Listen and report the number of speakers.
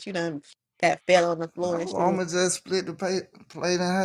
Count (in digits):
2